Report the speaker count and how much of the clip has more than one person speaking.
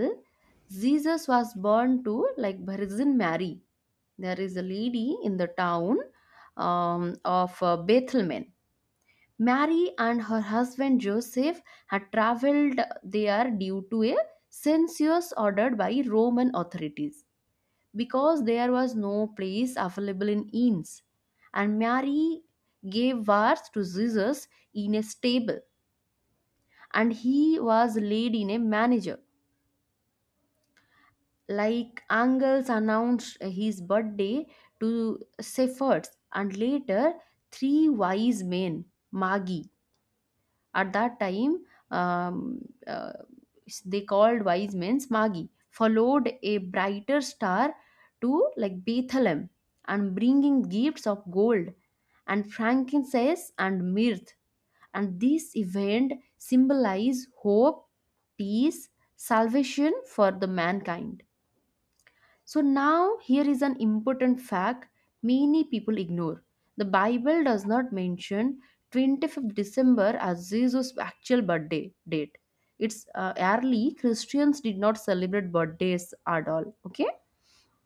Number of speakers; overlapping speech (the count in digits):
1, no overlap